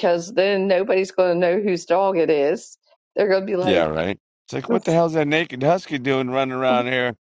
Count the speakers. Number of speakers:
2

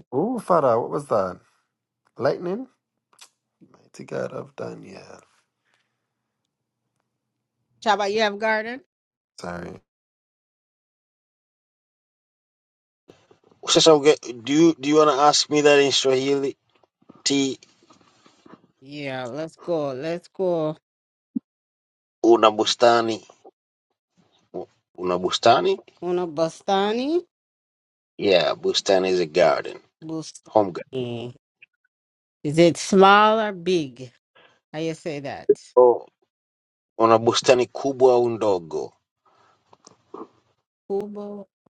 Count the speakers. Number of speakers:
3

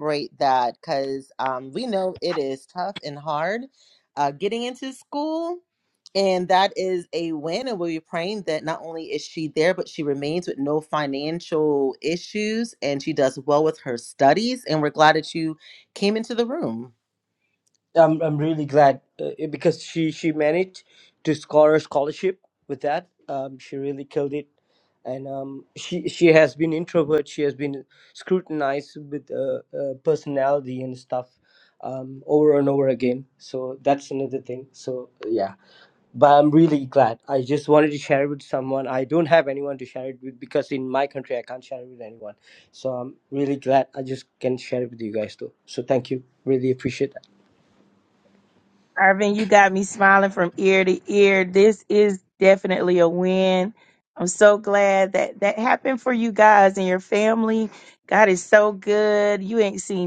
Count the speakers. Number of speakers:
3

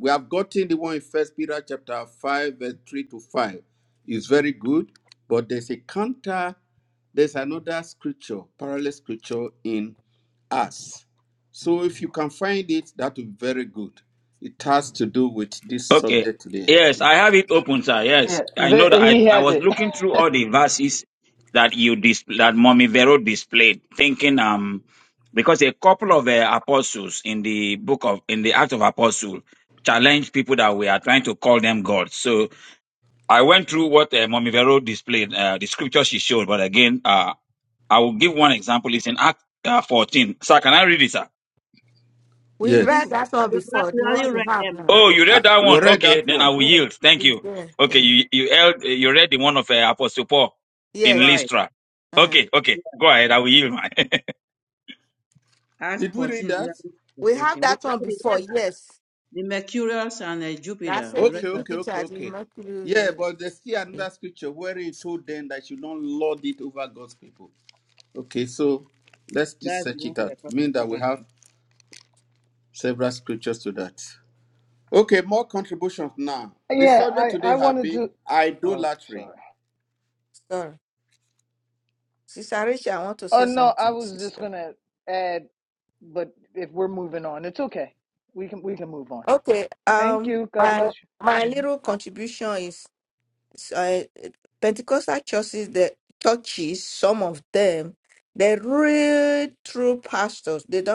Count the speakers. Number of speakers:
5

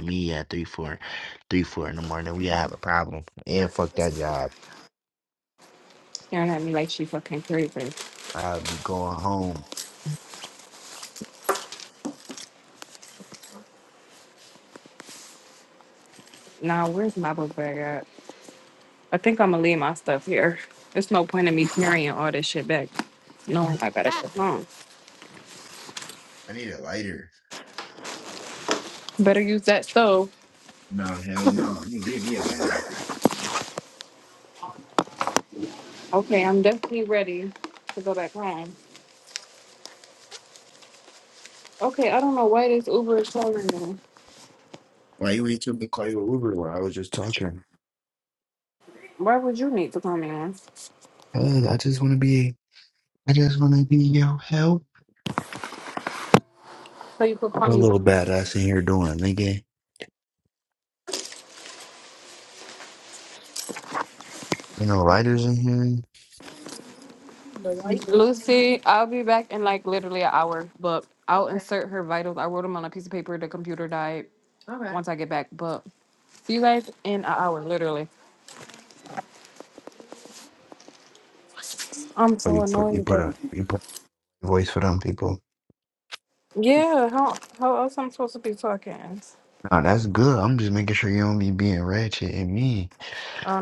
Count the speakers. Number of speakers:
2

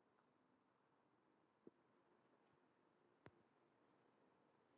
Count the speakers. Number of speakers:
0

